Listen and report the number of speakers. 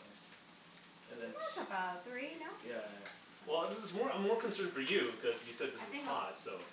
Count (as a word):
two